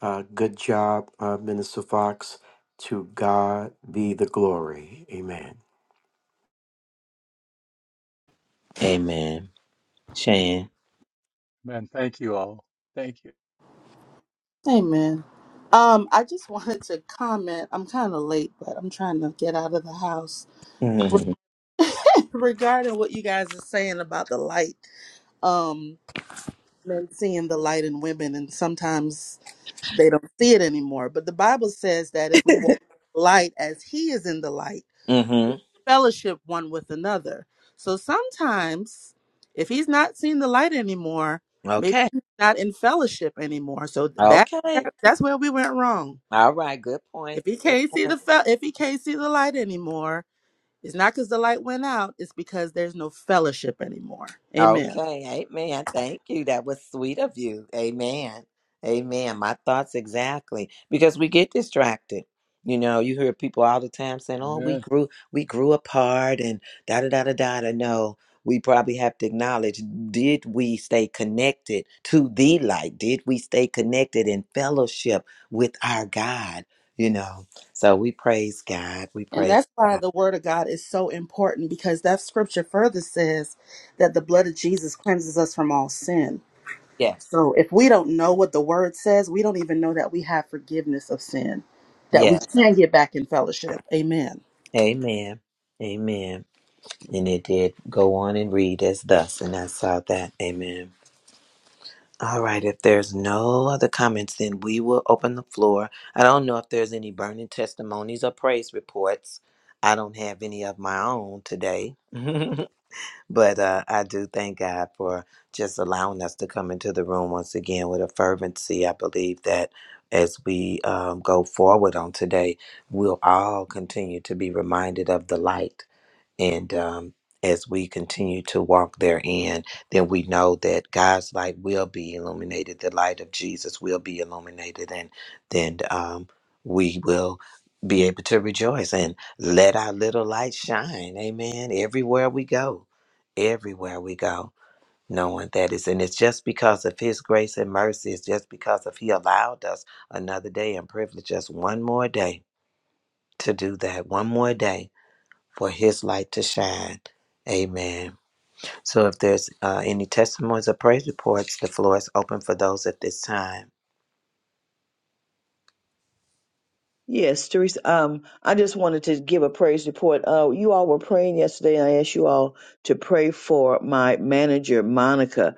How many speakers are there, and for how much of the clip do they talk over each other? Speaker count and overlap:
five, about 2%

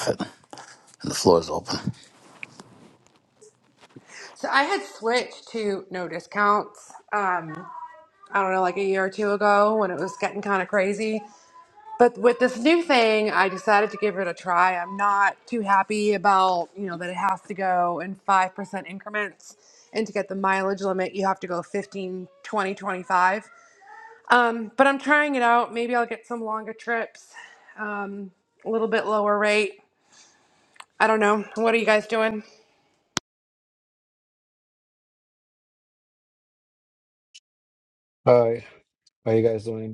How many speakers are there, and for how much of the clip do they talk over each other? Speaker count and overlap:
three, no overlap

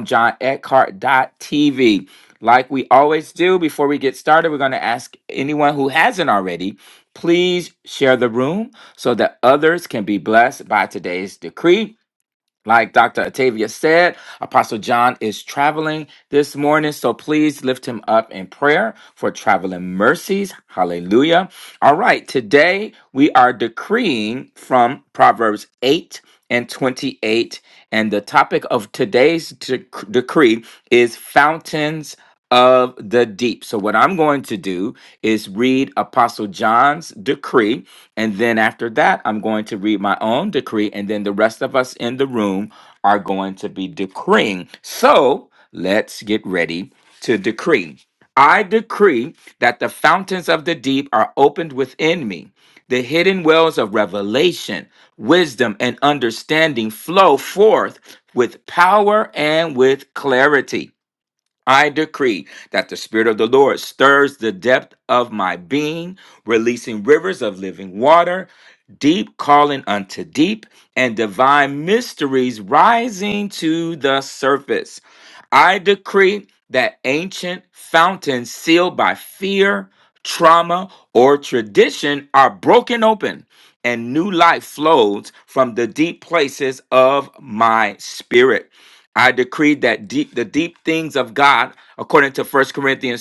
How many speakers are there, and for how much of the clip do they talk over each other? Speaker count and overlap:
one, no overlap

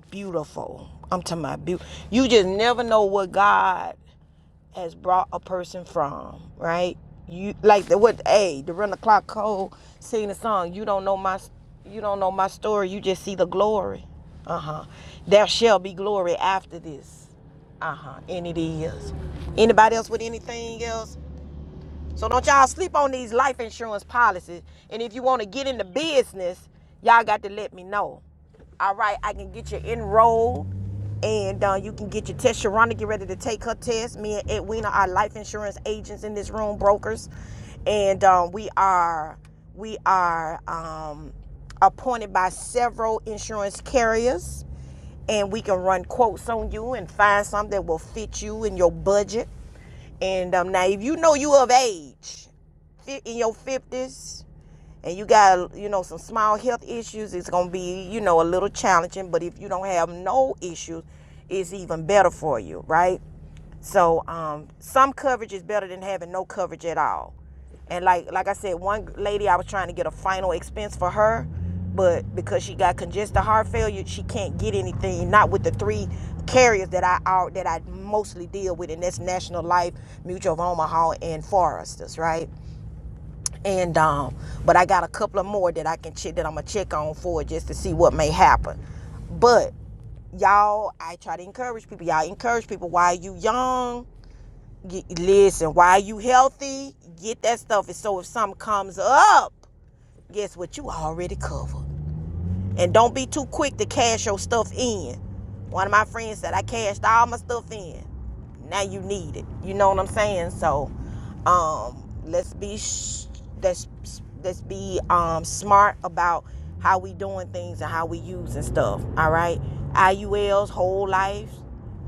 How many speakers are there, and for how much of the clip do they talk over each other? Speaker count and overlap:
one, no overlap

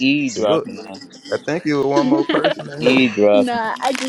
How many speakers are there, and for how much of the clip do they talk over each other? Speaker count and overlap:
three, about 36%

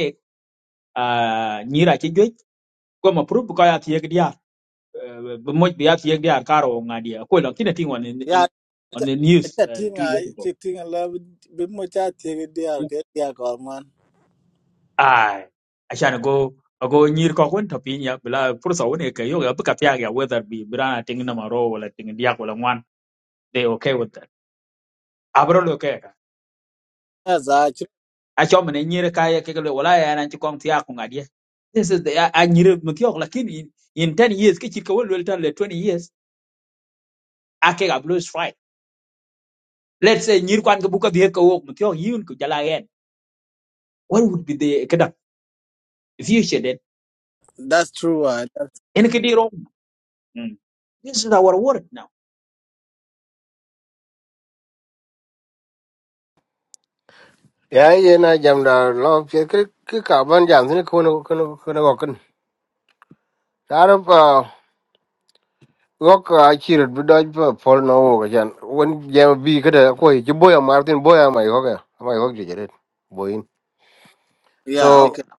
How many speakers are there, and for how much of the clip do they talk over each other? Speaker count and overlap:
three, about 2%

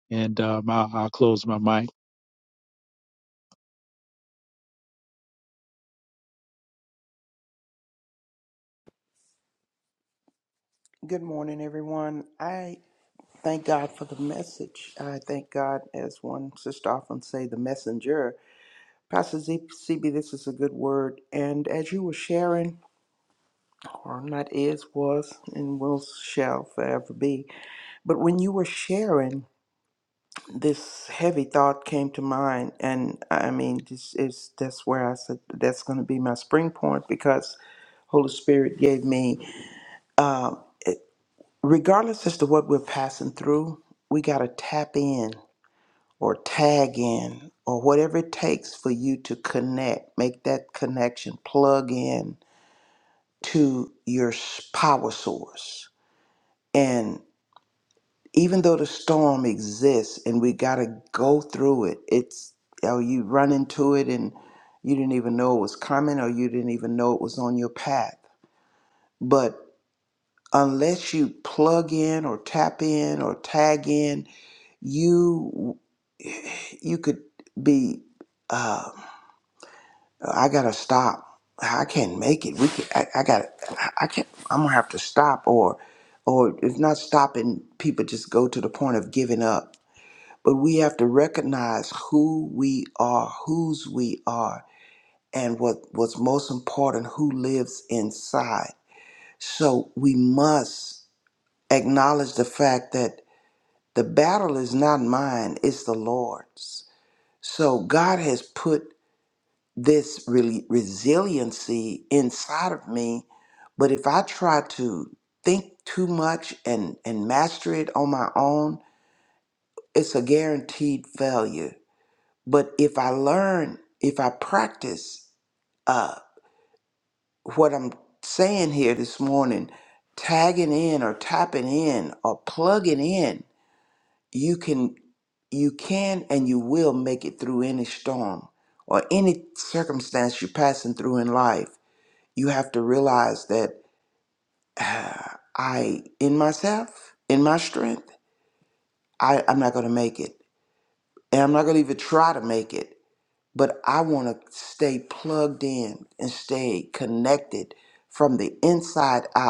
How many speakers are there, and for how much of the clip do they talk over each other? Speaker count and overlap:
two, no overlap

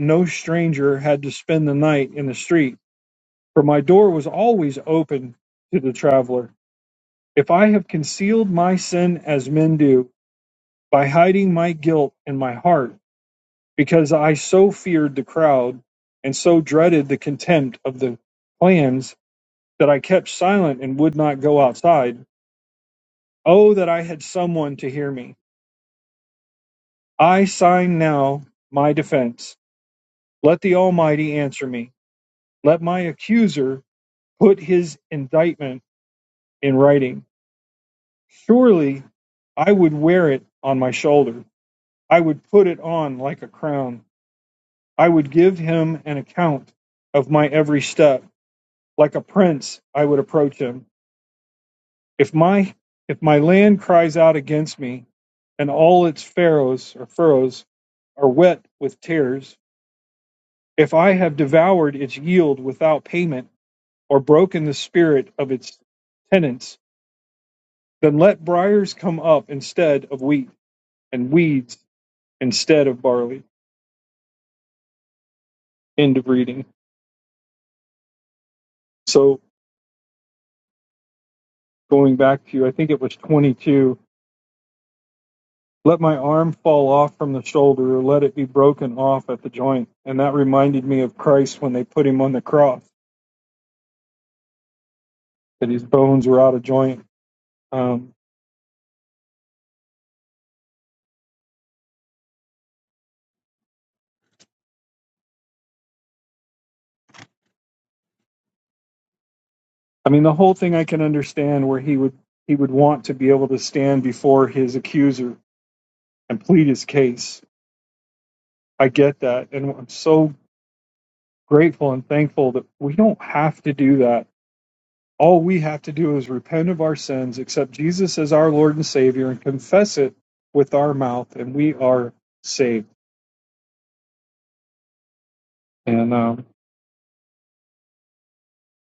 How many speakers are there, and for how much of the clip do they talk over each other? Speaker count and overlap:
one, no overlap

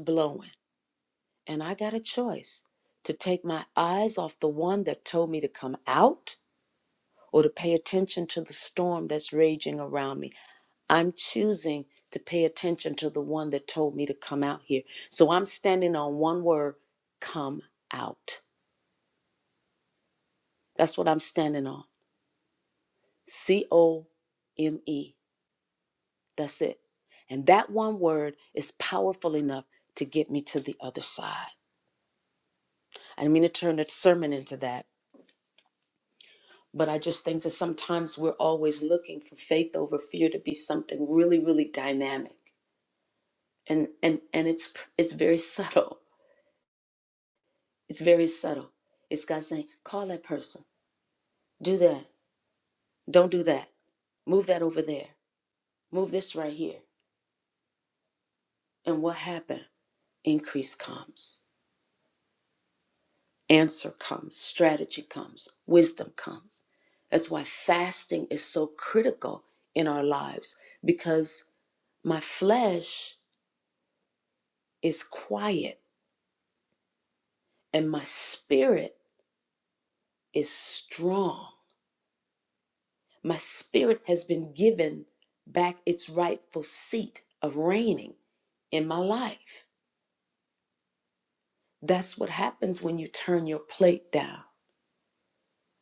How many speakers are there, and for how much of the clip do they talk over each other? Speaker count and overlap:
one, no overlap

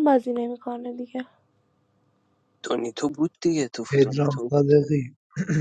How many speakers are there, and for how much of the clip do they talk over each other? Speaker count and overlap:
three, about 11%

